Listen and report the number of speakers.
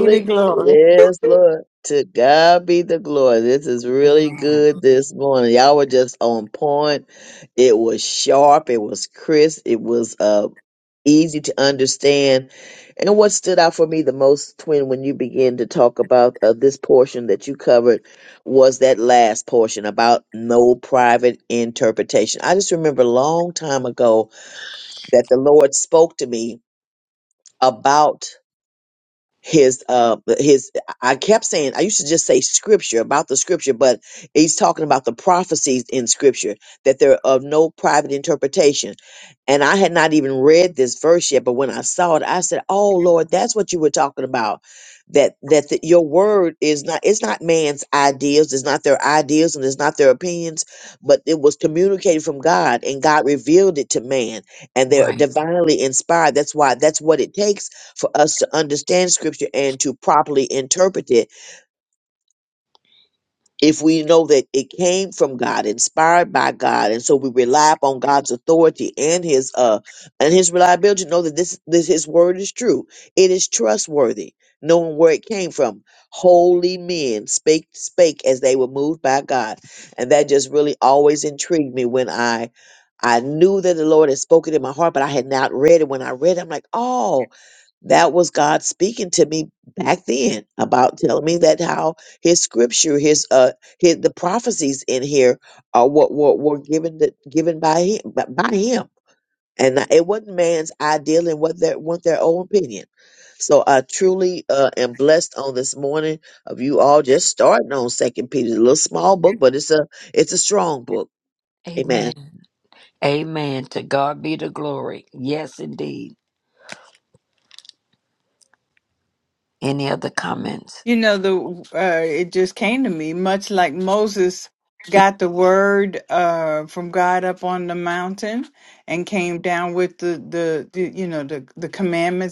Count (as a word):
three